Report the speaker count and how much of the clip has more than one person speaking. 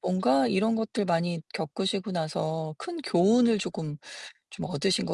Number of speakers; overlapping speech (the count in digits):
1, no overlap